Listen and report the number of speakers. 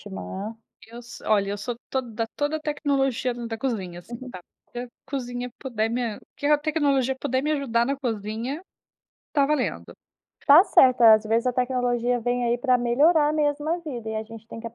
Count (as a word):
two